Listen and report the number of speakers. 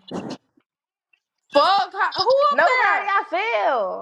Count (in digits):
2